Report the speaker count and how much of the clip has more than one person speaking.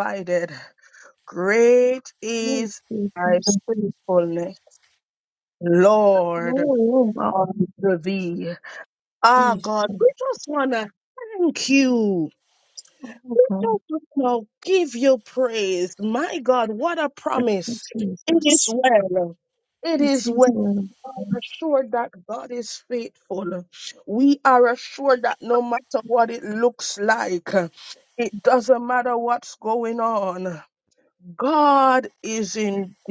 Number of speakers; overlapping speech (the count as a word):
two, about 6%